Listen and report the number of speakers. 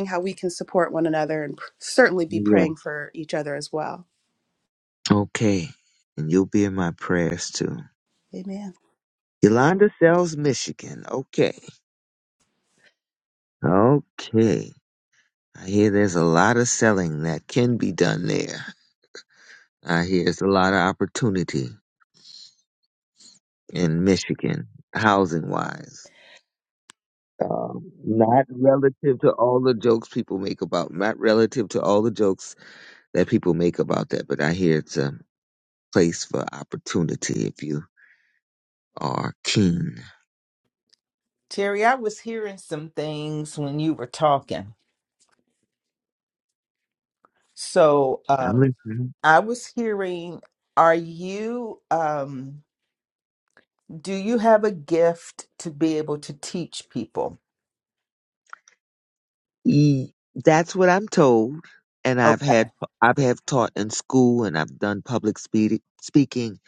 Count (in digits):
3